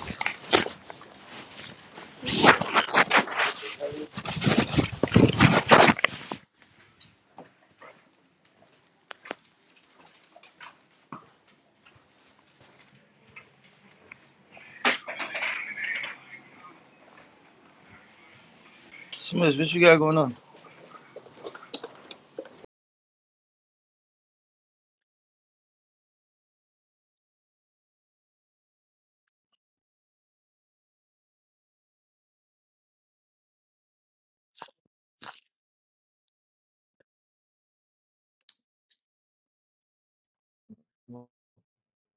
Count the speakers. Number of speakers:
one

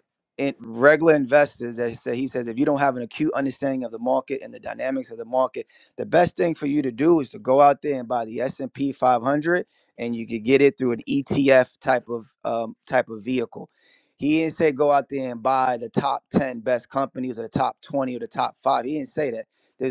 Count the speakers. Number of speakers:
one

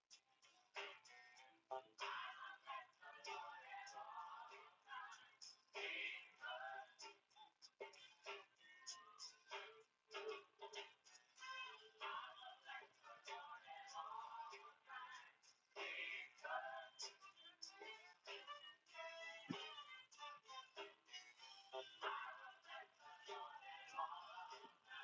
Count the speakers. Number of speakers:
zero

